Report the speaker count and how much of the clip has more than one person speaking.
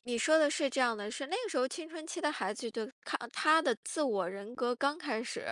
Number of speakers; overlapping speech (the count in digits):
1, no overlap